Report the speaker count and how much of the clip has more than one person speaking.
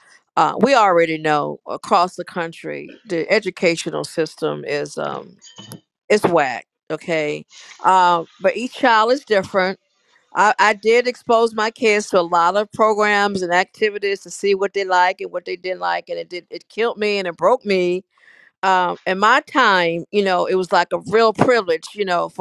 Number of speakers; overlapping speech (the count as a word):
one, no overlap